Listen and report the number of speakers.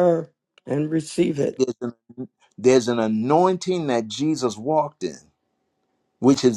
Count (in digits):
2